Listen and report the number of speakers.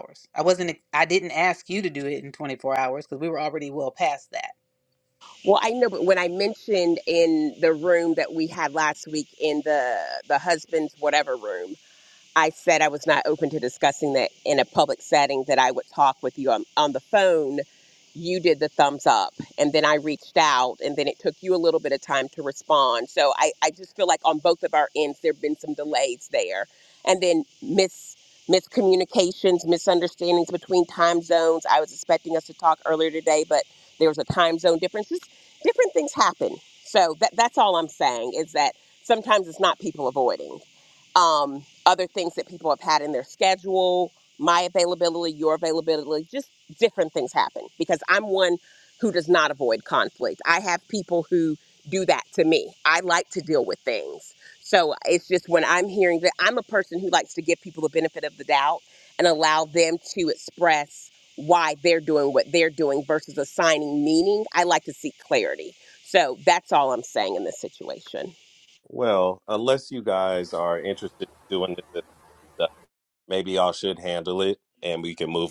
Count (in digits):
3